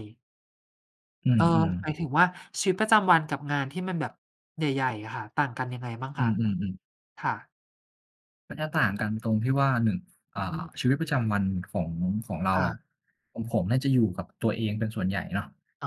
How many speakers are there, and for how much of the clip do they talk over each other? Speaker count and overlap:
2, about 4%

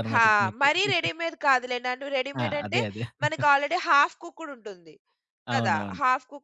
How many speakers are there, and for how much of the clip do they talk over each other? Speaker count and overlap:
2, about 25%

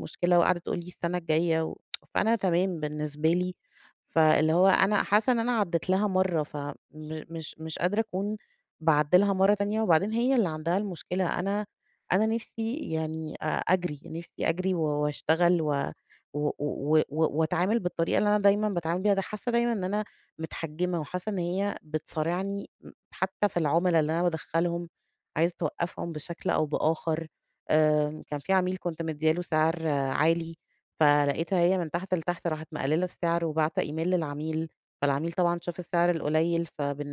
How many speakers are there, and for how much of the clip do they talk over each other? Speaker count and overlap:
1, no overlap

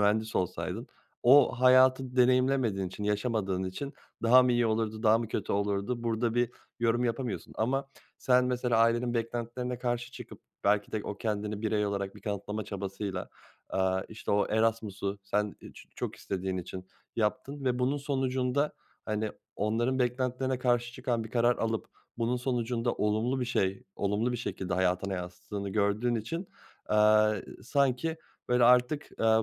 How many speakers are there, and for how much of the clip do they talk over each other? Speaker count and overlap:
1, no overlap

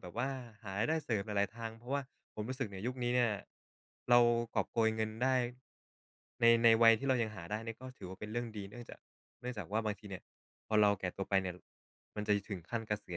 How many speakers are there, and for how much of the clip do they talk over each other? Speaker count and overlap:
1, no overlap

